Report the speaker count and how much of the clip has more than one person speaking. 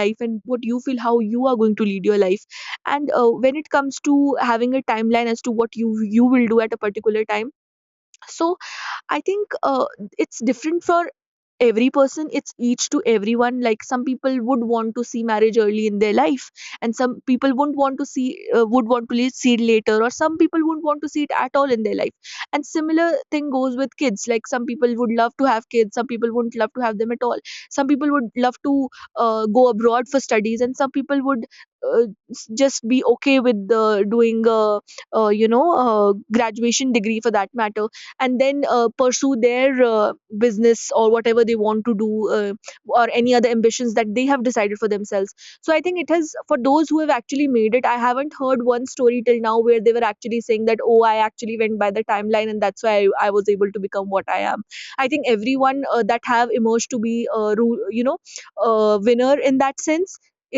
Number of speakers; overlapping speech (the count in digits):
1, no overlap